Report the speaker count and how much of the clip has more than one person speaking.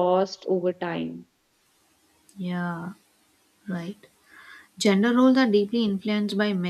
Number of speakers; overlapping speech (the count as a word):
two, no overlap